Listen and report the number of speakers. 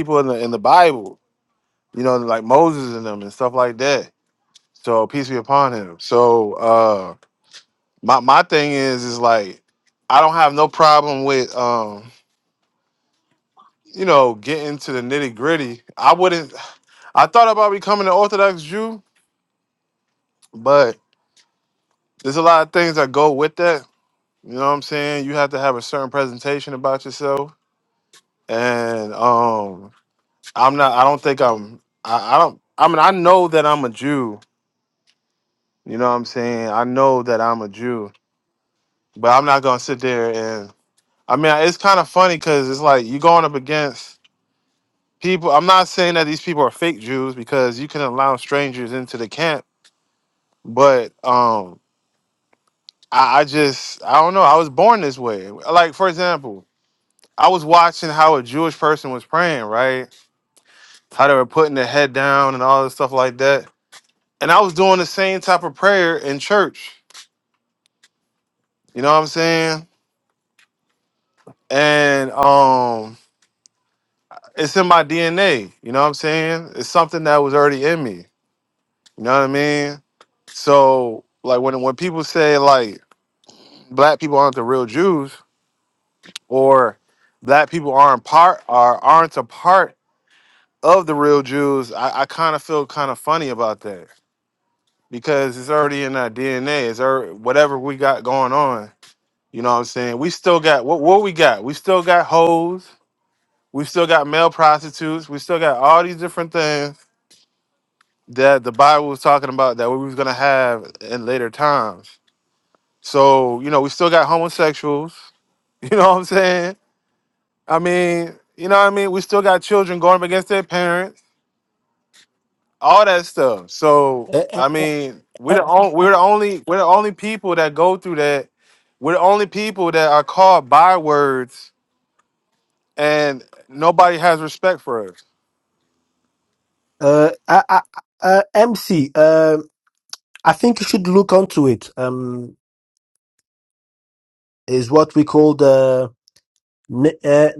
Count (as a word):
two